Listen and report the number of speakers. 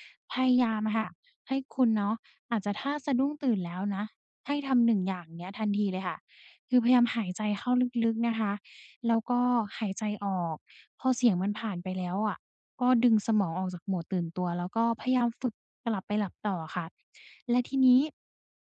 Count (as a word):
one